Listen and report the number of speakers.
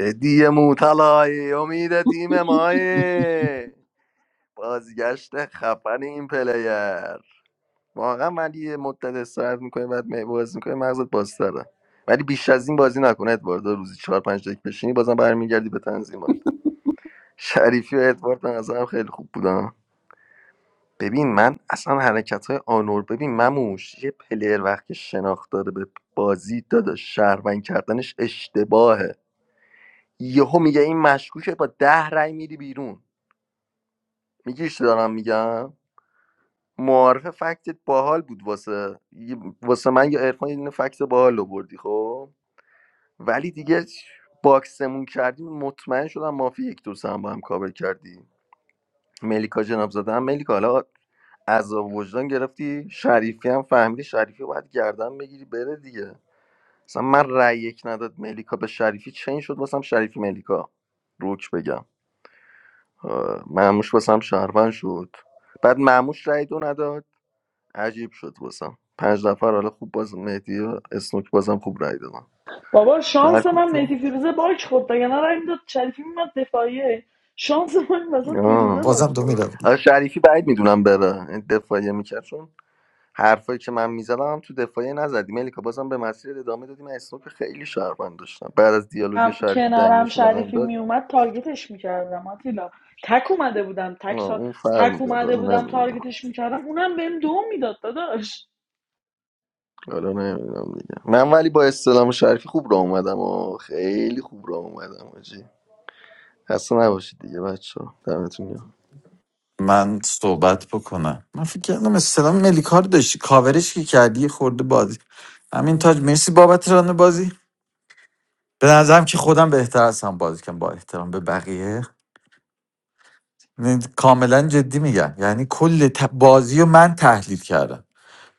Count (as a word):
three